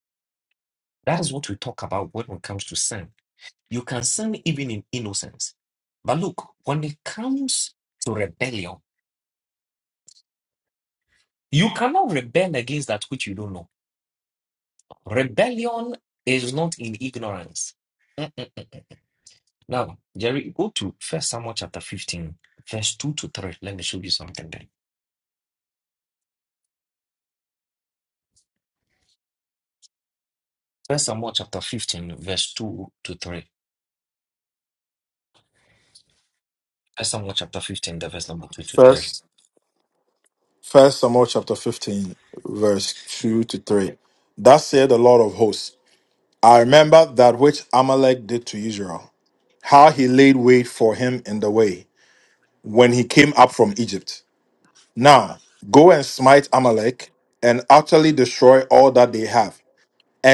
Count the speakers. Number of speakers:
two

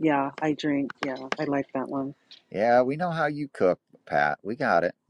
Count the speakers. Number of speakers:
two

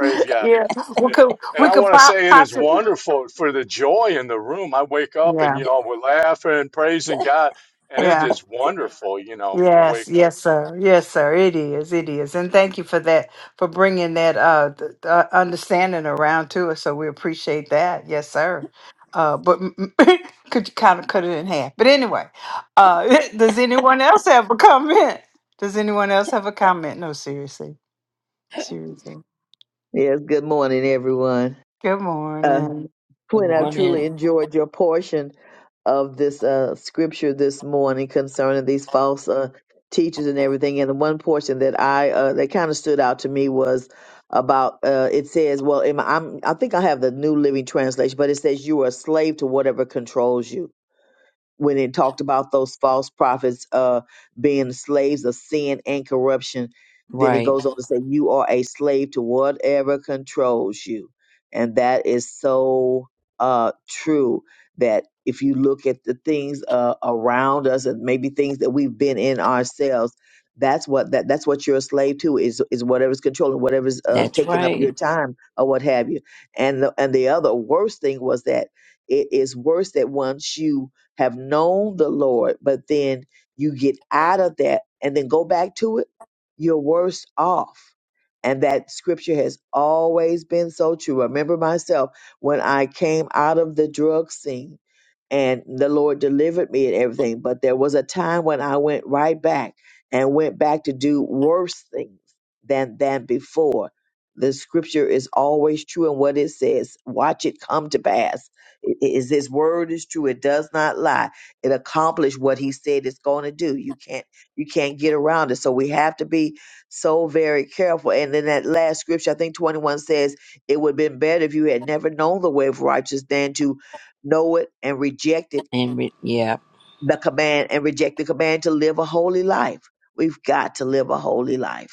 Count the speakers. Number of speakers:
four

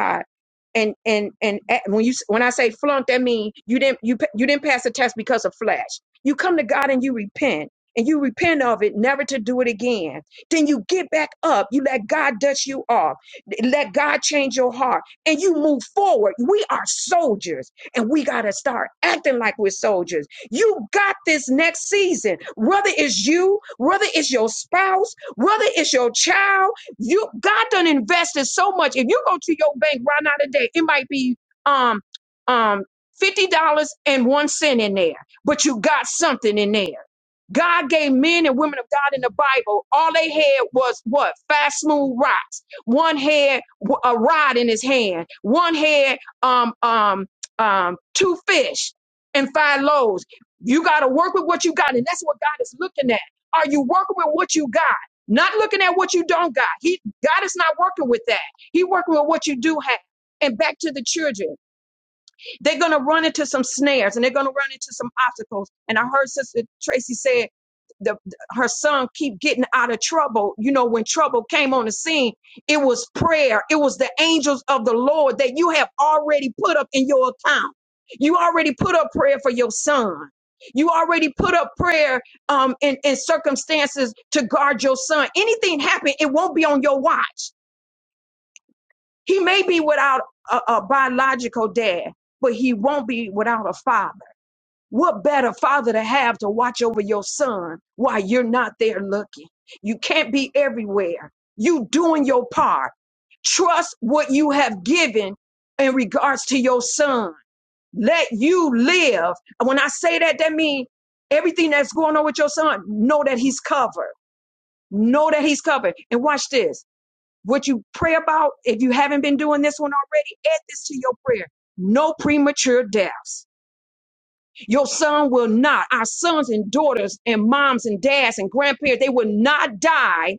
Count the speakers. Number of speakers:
one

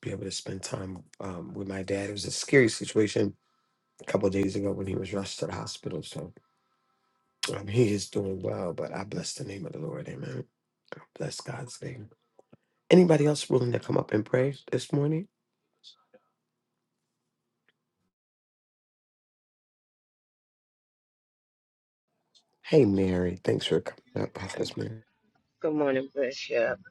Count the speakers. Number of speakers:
two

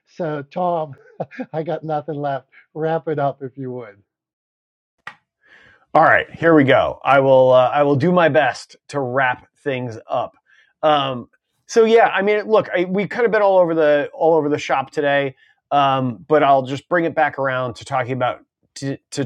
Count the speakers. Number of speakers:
two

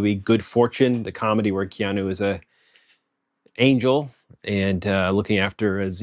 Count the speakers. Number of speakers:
one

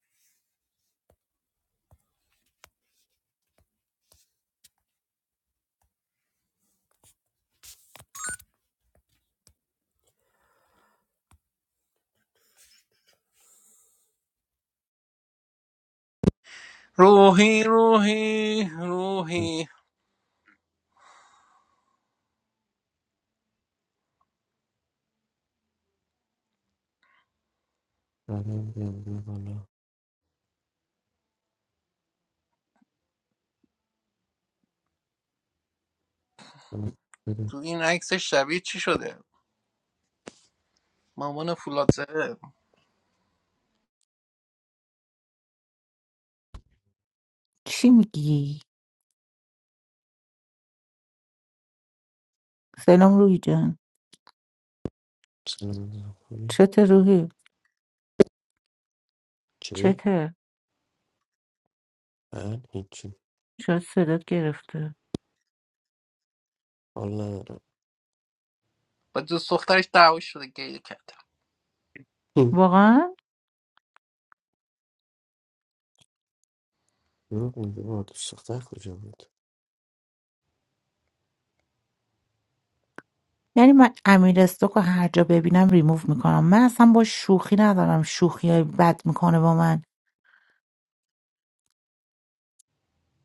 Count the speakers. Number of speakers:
three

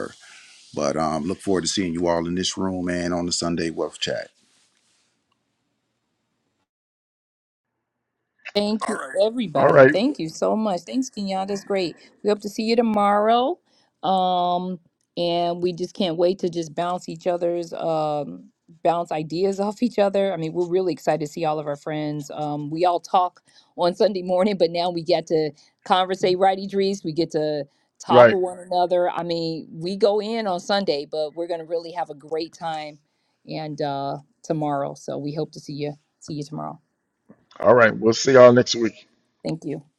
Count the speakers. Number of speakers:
three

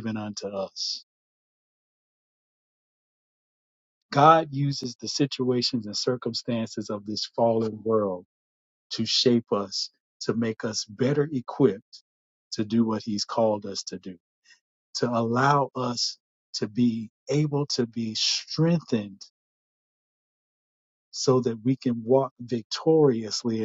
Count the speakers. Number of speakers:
one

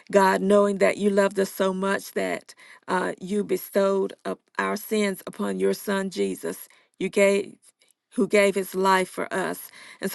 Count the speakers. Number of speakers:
one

